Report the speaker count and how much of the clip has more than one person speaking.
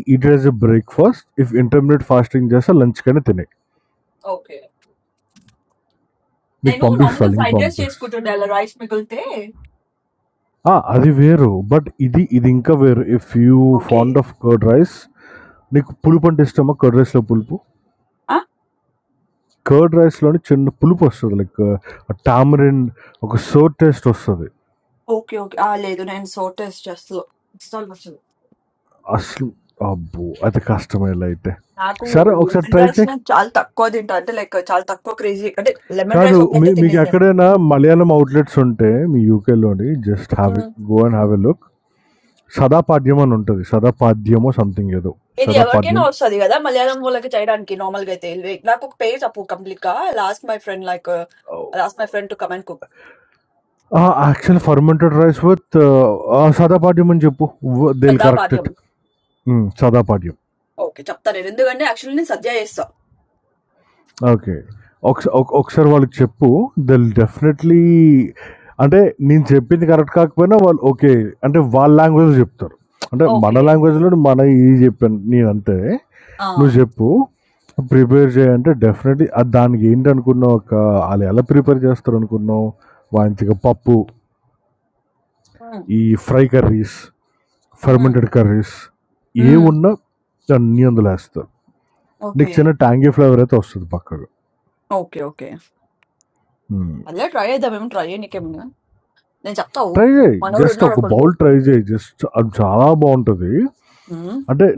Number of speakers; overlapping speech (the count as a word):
two, about 7%